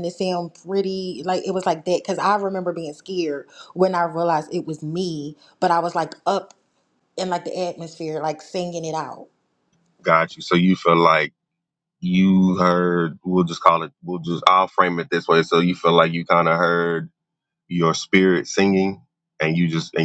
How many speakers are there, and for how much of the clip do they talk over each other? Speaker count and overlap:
two, no overlap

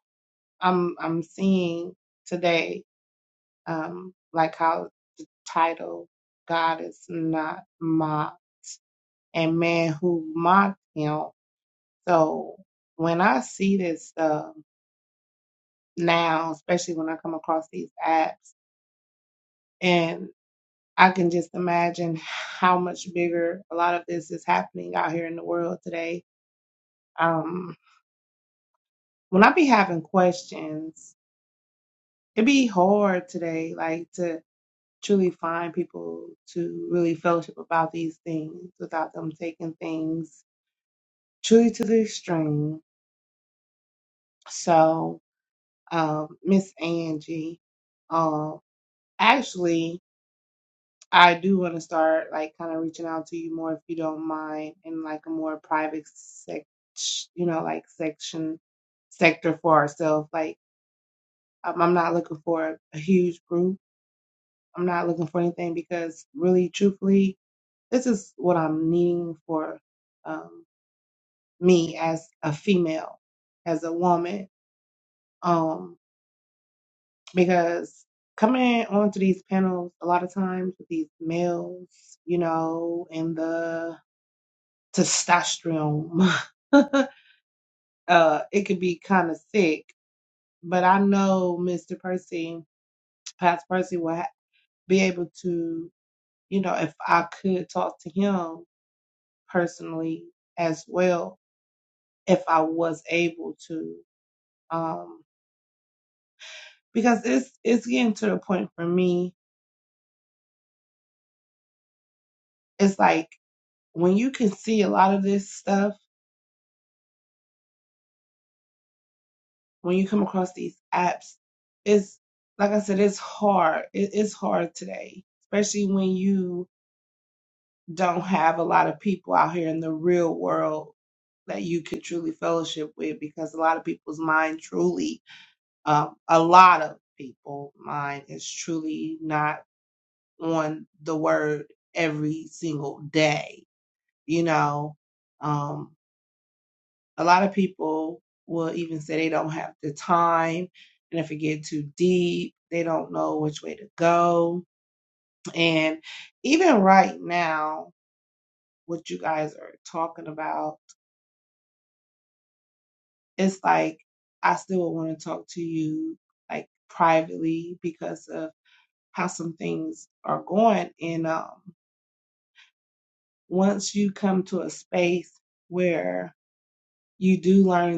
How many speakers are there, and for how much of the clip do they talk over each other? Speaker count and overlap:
one, no overlap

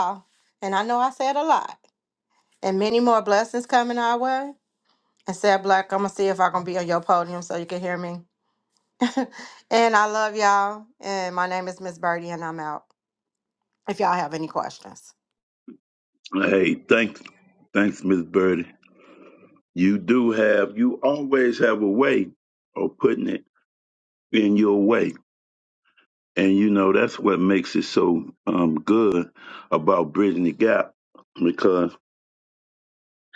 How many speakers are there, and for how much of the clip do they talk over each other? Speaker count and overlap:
two, no overlap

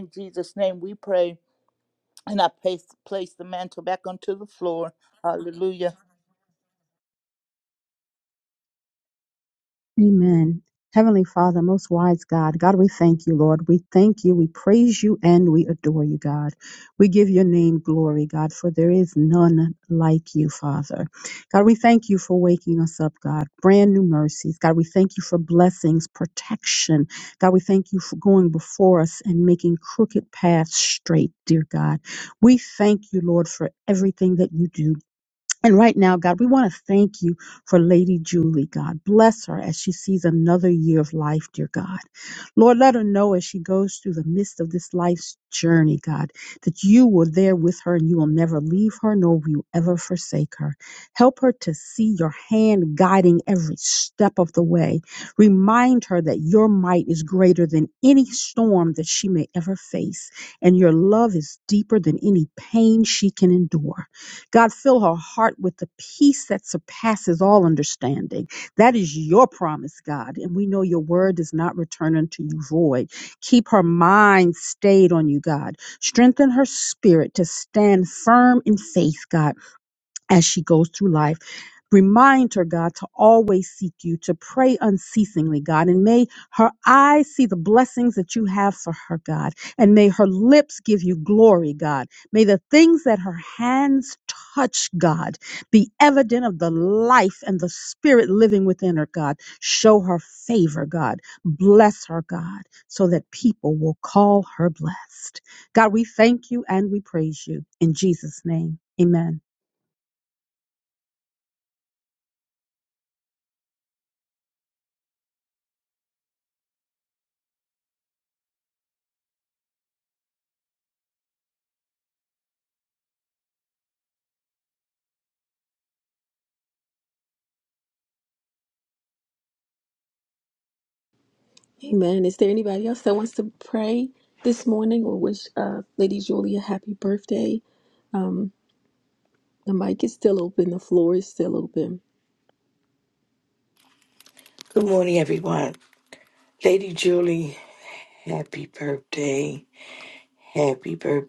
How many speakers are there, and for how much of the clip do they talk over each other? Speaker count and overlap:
four, no overlap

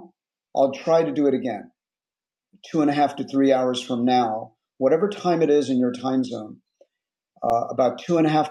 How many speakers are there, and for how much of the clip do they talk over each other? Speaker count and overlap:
one, no overlap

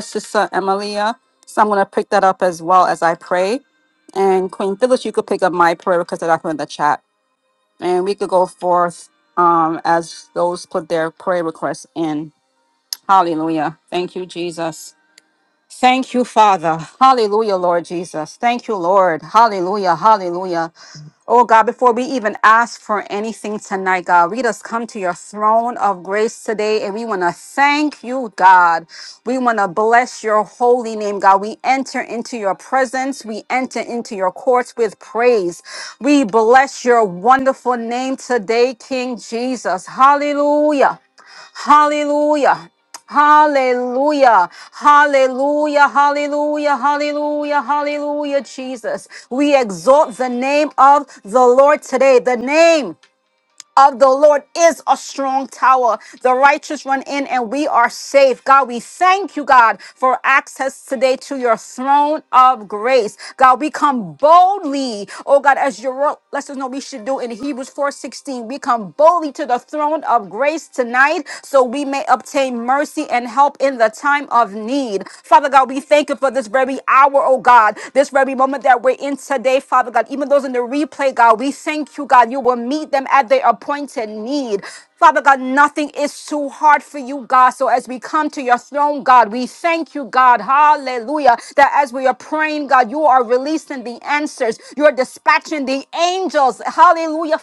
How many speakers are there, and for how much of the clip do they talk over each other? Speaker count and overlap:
one, no overlap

